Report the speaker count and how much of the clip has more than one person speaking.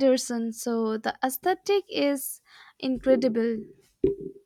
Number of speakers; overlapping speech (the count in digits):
1, no overlap